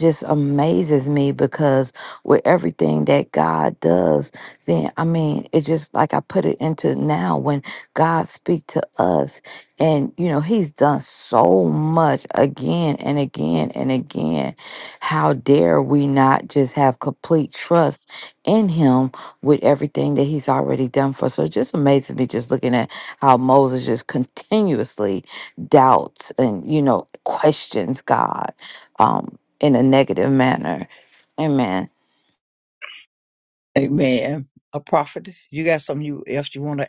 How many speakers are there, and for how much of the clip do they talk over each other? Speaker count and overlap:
two, no overlap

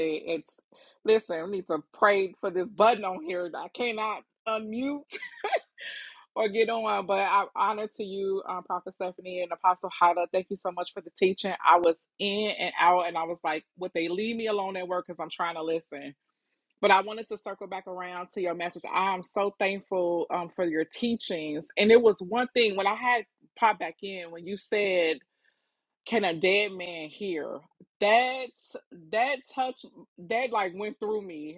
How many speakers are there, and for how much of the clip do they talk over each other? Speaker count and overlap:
one, no overlap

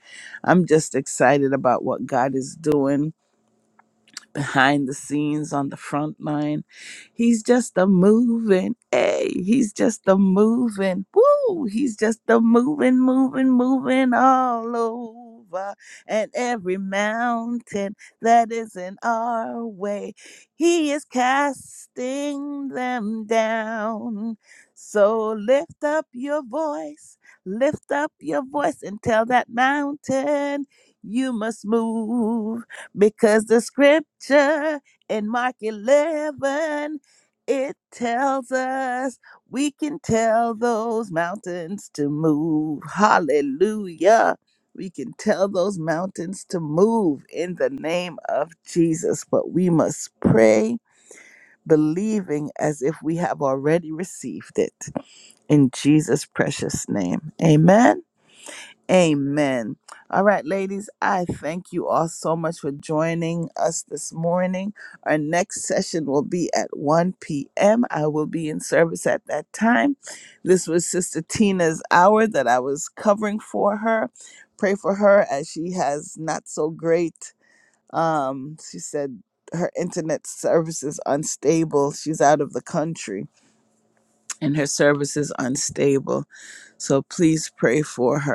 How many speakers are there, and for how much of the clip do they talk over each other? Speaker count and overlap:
one, no overlap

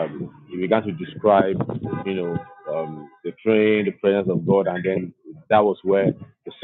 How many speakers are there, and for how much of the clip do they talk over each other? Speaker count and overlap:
one, no overlap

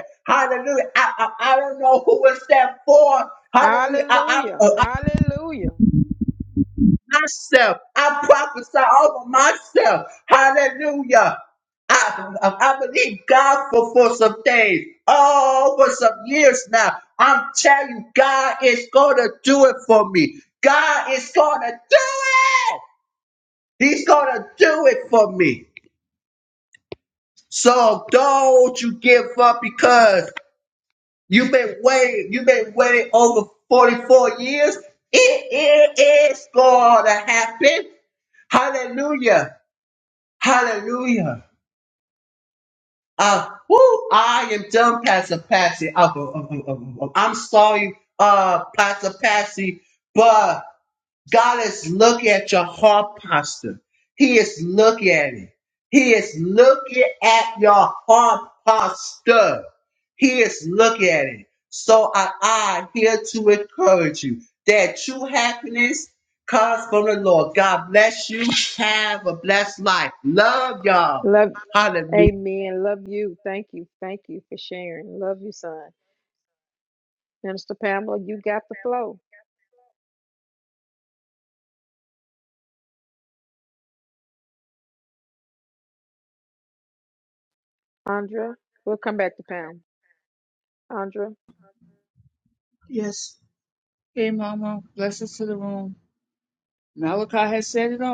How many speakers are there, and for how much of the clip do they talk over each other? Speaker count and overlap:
three, about 1%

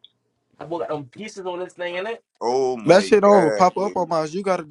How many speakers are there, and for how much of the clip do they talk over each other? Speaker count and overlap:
three, about 23%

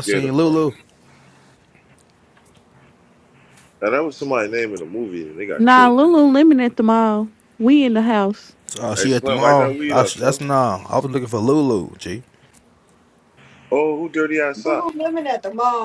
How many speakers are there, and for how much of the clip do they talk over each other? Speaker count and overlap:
four, about 18%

